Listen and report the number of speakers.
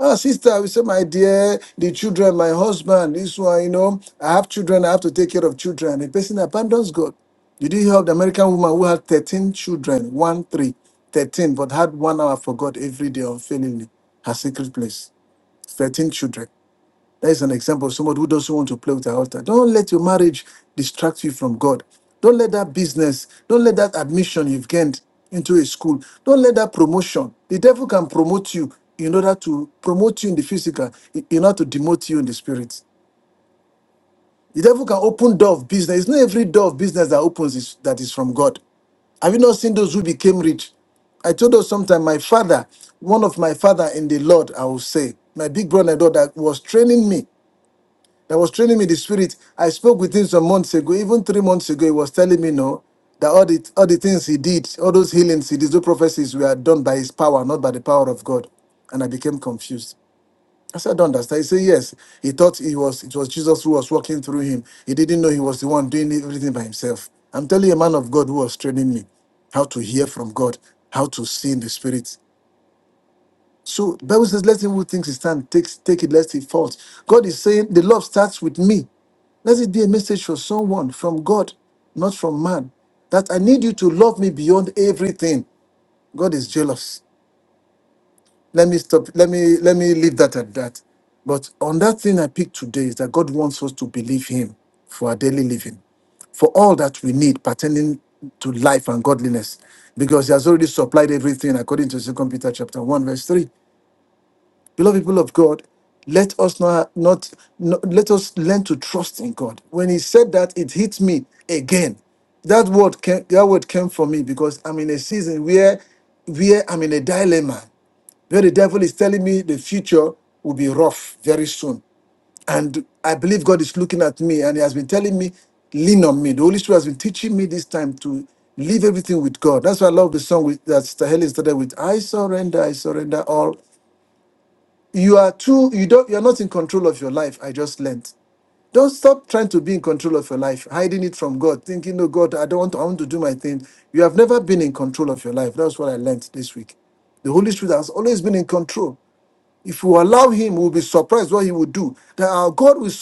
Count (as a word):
one